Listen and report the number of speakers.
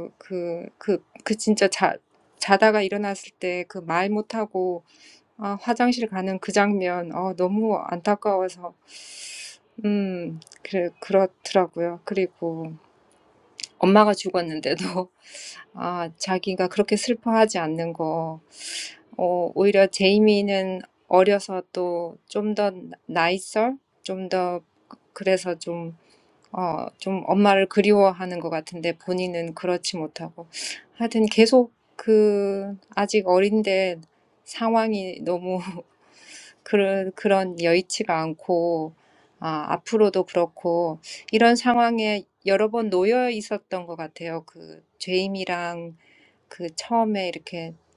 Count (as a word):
one